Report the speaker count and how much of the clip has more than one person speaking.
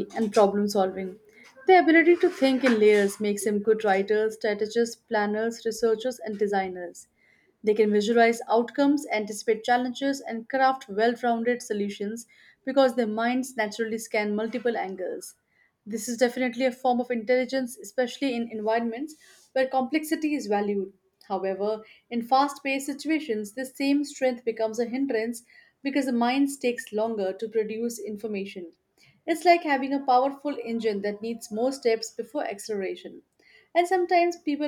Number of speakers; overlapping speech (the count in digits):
1, no overlap